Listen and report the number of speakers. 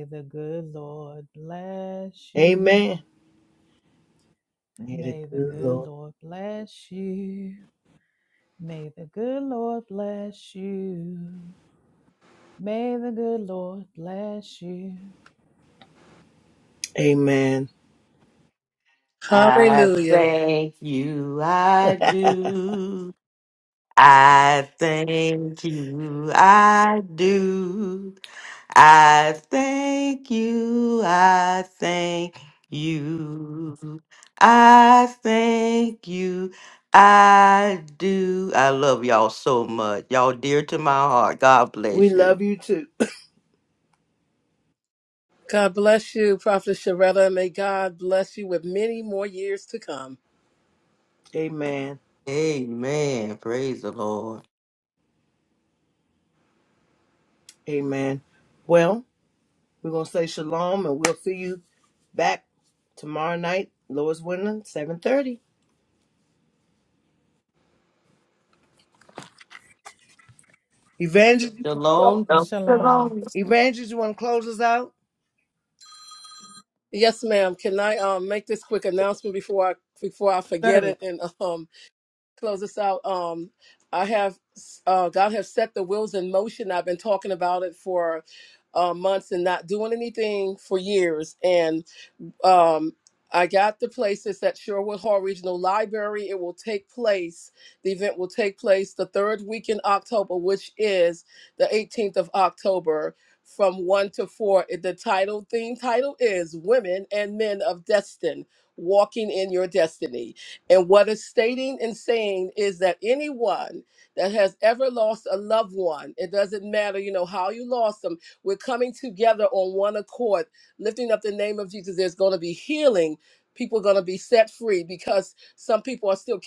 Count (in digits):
4